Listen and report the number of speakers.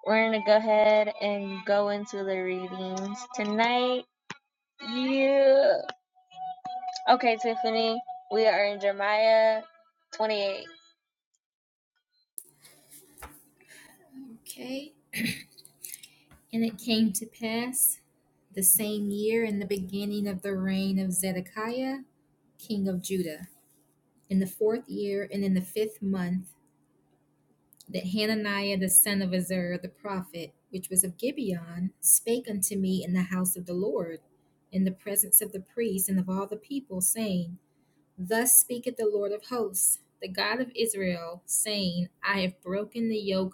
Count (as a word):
two